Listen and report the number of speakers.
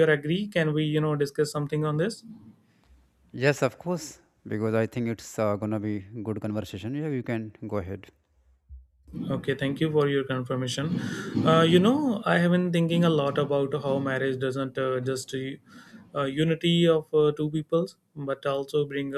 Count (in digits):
2